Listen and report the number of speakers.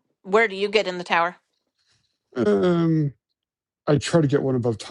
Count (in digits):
2